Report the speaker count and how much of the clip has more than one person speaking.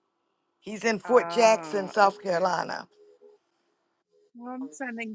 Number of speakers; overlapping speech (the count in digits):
2, about 29%